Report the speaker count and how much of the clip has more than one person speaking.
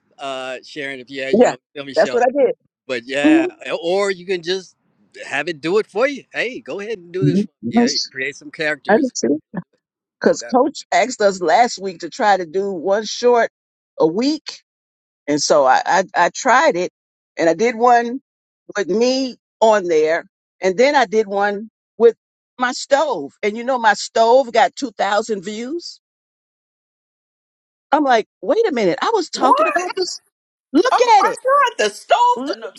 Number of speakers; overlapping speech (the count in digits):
3, about 10%